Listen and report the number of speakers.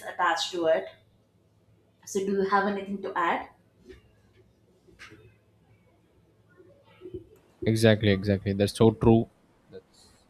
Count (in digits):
2